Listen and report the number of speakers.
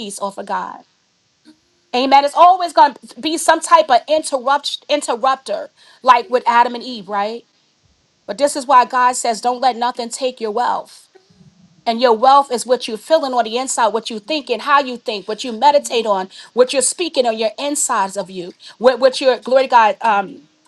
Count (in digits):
1